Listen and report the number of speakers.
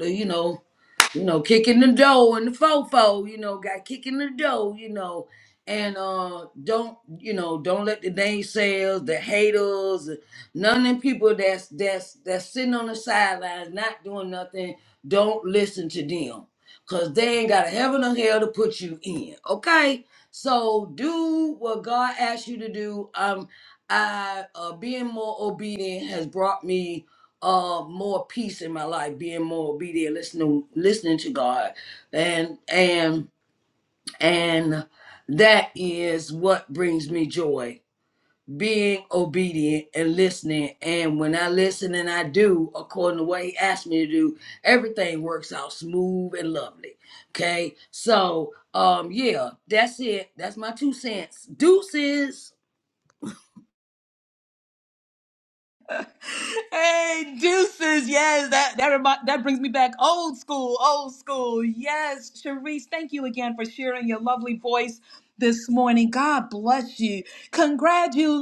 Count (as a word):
two